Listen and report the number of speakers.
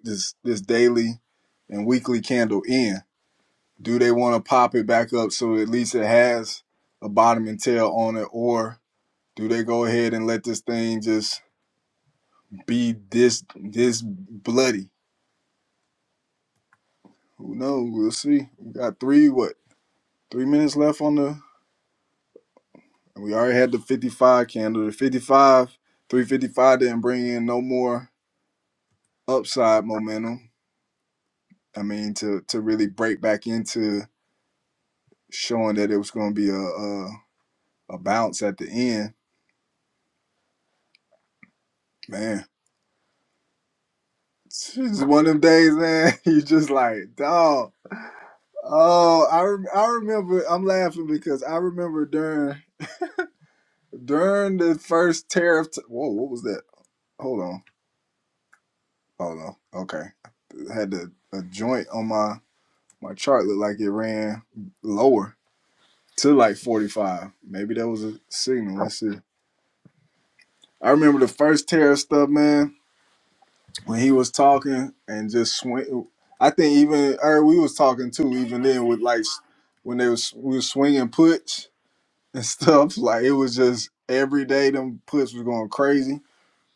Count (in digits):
1